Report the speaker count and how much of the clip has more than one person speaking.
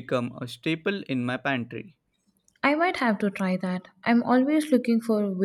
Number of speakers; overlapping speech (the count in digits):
2, no overlap